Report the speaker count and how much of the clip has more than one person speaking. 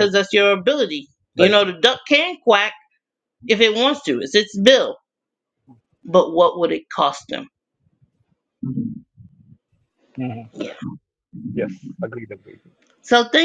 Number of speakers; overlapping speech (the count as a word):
two, about 2%